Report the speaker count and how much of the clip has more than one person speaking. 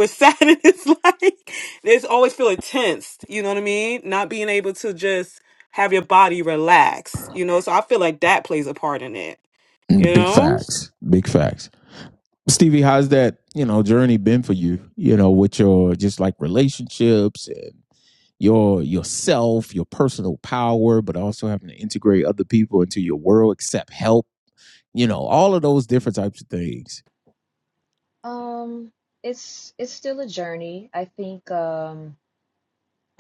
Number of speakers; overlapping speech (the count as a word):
three, about 2%